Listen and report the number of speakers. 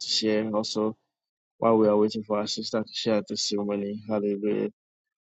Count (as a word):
one